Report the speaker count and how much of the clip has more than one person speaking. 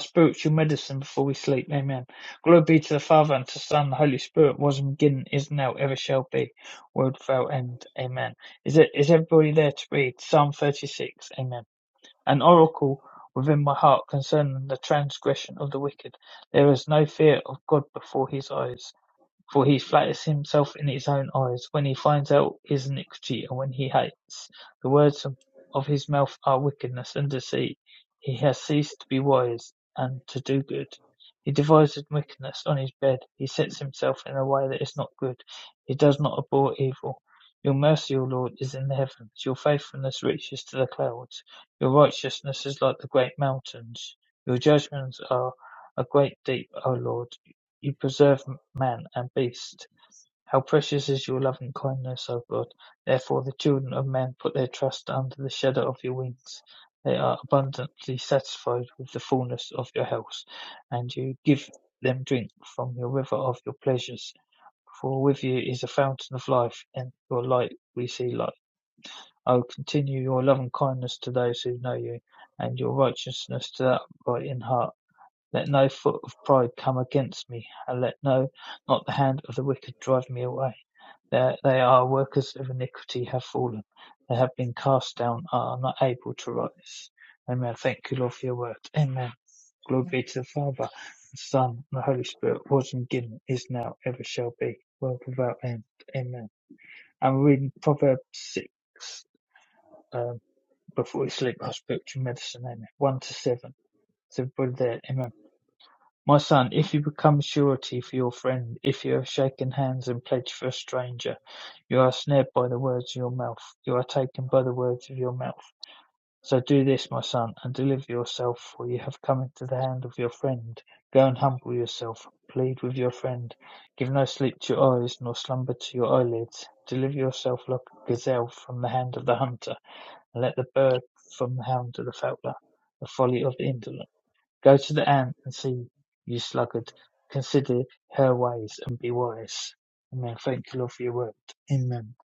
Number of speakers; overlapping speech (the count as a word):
one, no overlap